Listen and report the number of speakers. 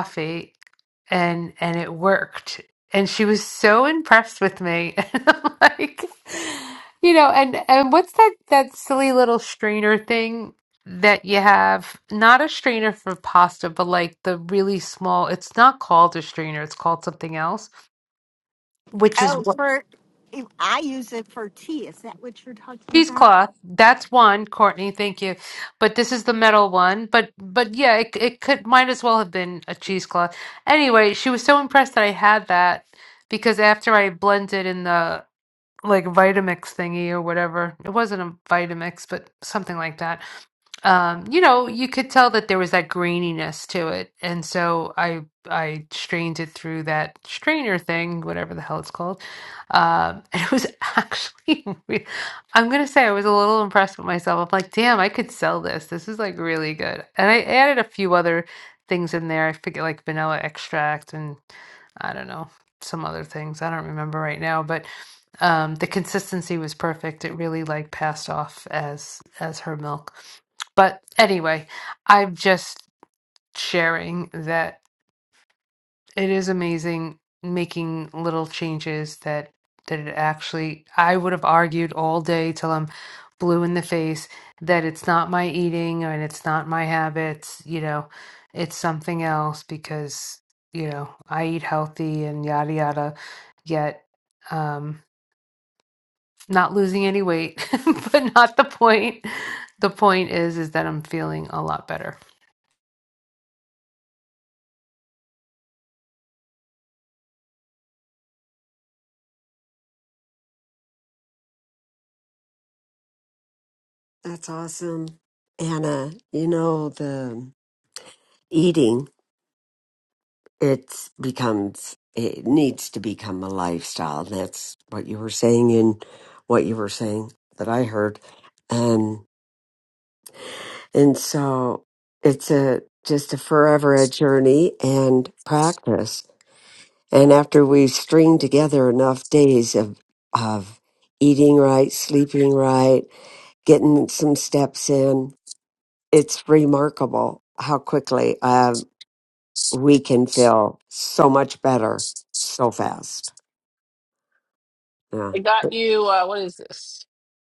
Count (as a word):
four